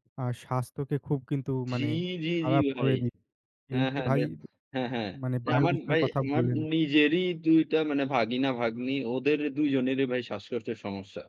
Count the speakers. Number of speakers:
two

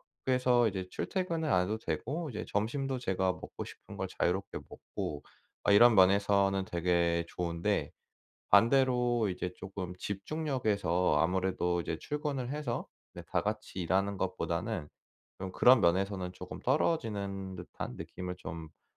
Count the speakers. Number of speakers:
one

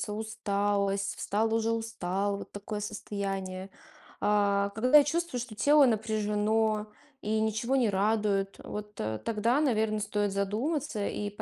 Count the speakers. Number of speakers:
one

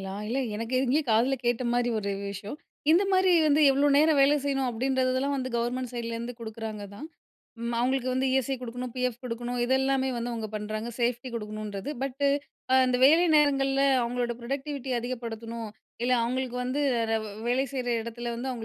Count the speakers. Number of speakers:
one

